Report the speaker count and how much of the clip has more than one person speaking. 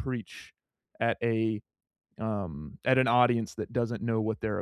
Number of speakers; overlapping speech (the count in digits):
1, no overlap